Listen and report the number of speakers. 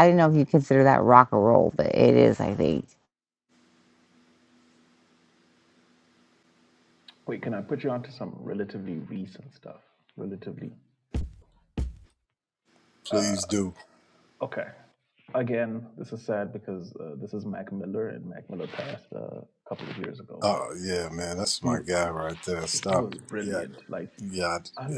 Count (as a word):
three